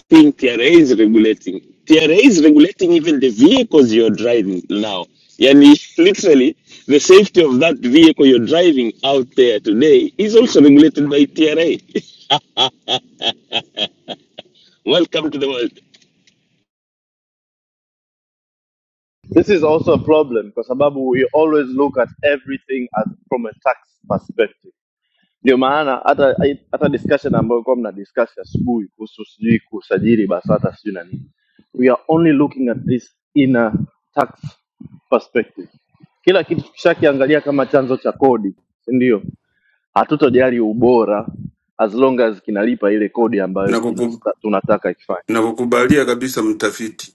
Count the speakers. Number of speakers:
three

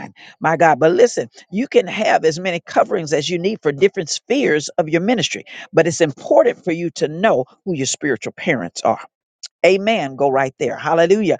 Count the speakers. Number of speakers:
one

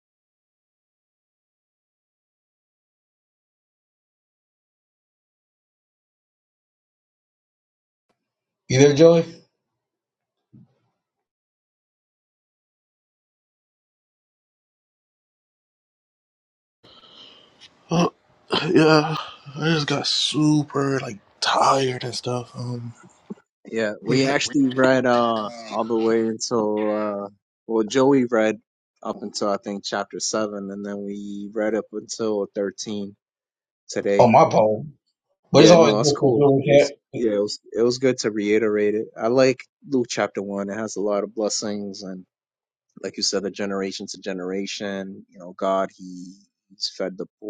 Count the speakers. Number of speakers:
three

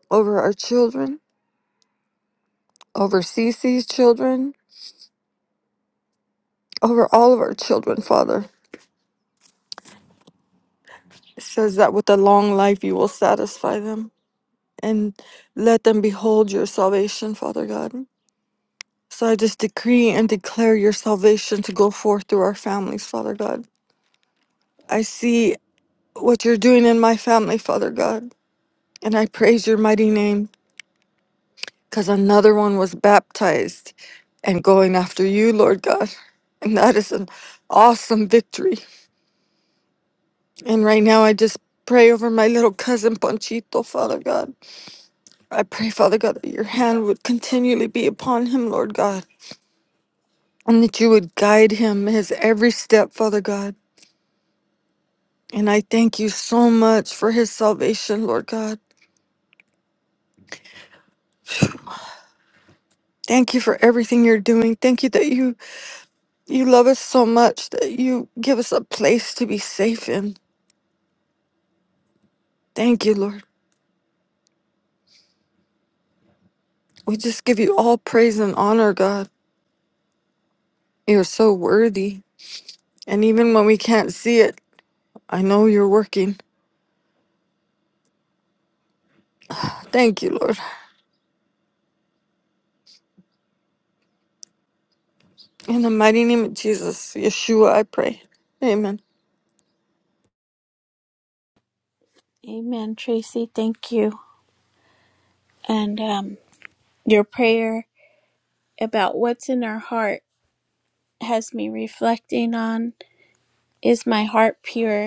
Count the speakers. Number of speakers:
two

